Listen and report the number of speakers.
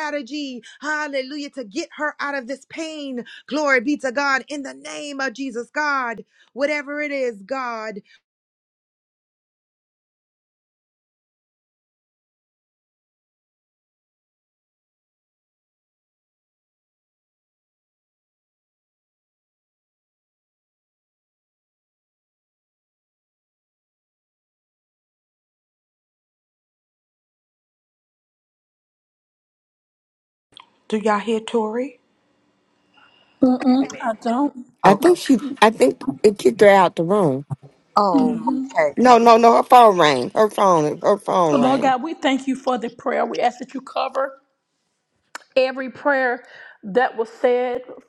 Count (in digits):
4